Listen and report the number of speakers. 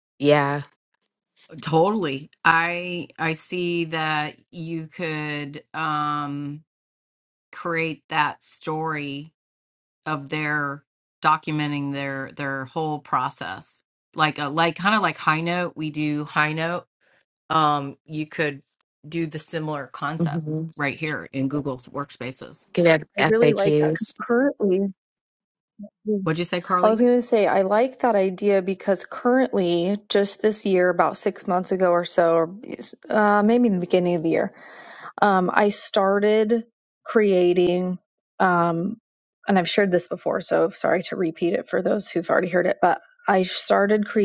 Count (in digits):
3